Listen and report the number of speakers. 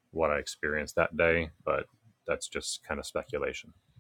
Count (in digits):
1